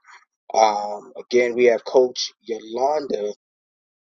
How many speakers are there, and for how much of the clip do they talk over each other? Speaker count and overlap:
1, no overlap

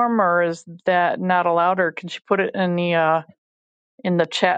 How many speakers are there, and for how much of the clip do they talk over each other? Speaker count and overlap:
1, no overlap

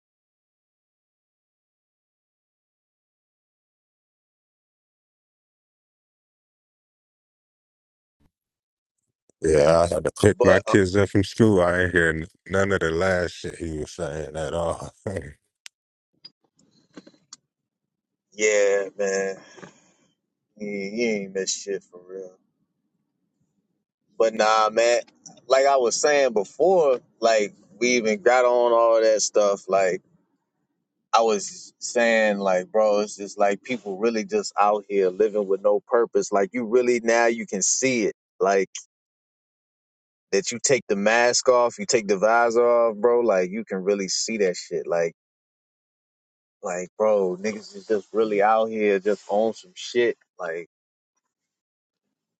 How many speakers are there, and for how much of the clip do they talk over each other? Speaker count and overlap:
2, about 1%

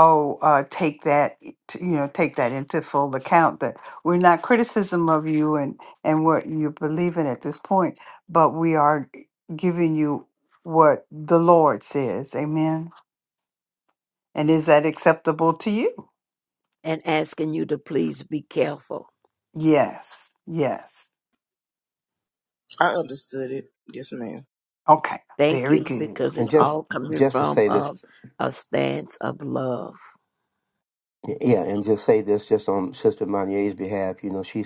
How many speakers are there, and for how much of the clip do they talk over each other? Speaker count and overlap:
4, about 5%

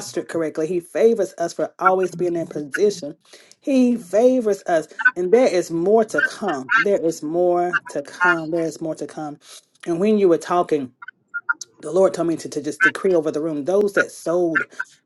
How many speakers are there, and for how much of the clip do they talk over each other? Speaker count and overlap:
1, no overlap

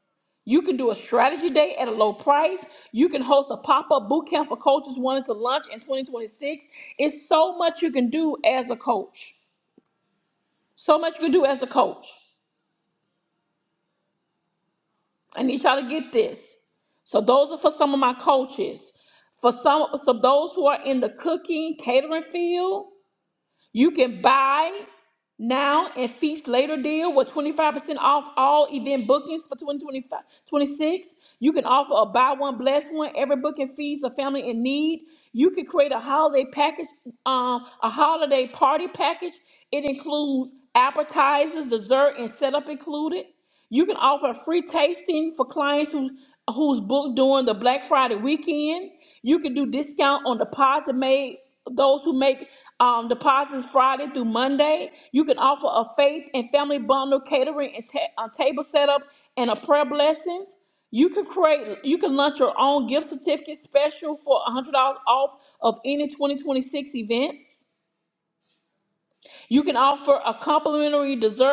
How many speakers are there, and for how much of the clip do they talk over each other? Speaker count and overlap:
1, no overlap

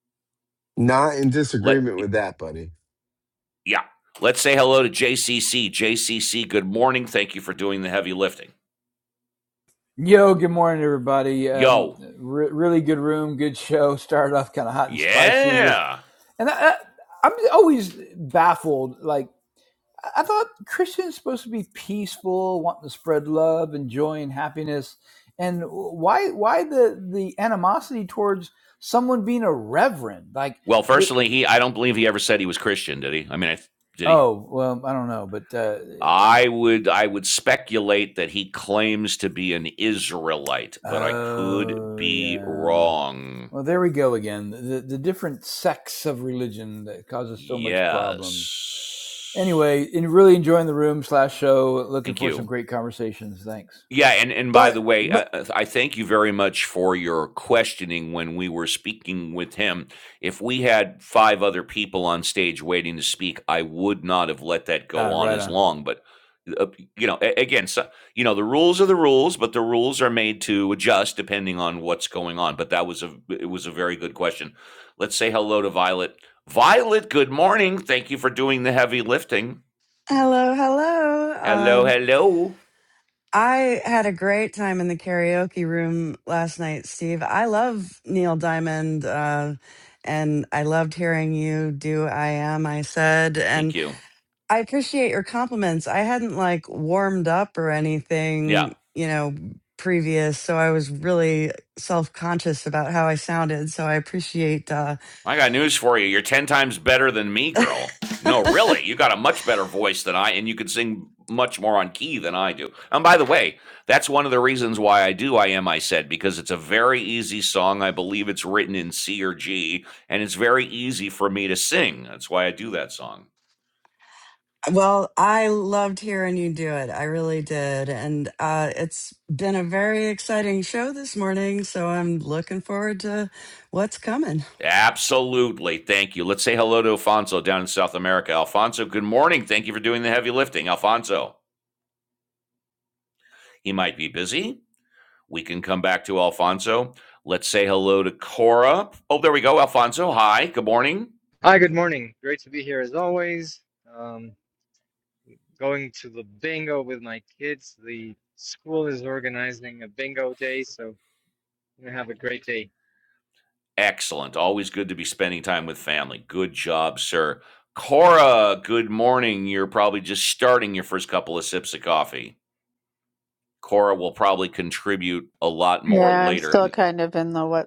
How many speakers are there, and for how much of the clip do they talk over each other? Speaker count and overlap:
6, about 4%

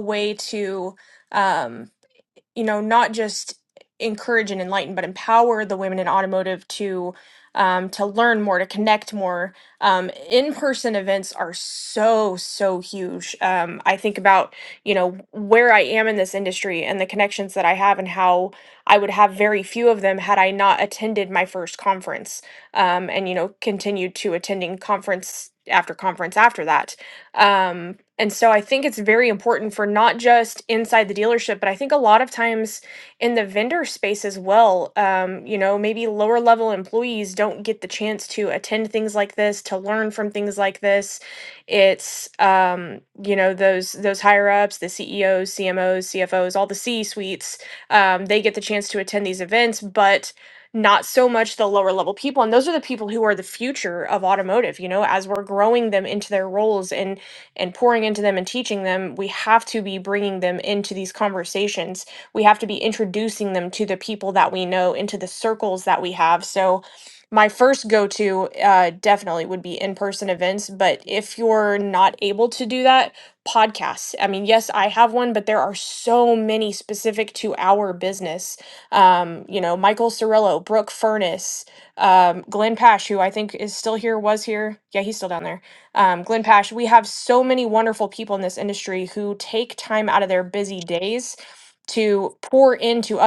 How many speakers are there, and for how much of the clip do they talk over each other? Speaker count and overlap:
1, no overlap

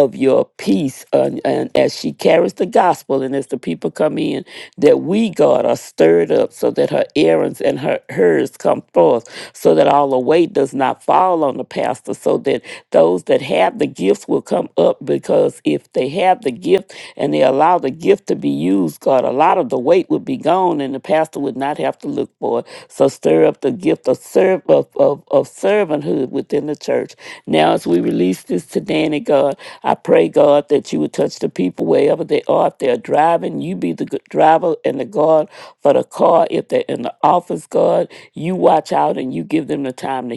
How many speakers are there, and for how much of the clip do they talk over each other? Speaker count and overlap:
1, no overlap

